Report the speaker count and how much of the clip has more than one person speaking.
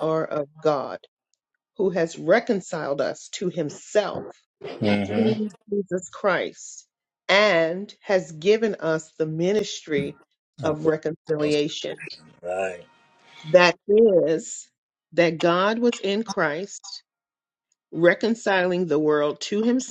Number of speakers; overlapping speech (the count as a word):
two, about 2%